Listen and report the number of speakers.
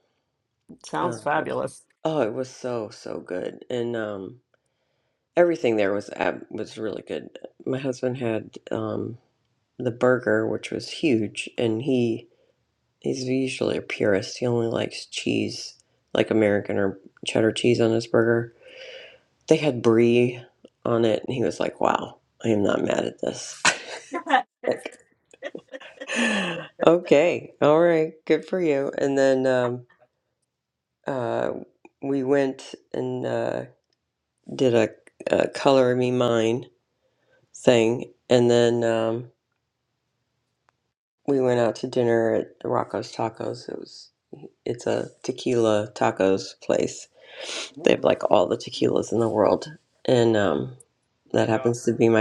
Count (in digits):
2